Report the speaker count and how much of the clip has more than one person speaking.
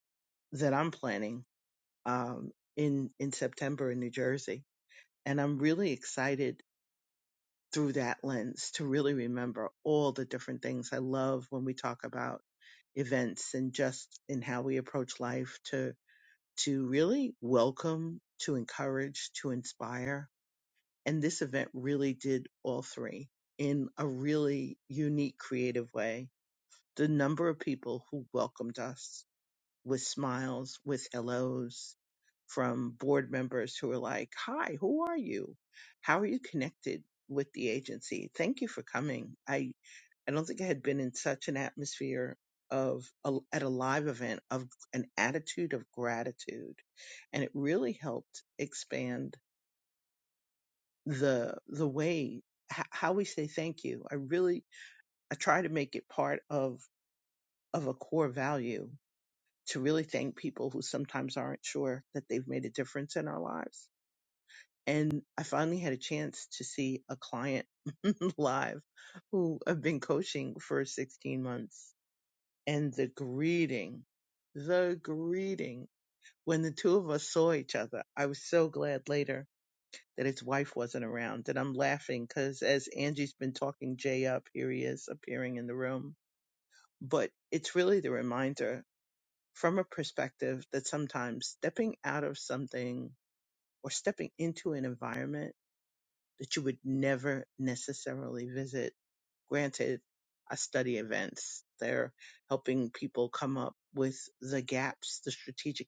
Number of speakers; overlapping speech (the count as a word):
one, no overlap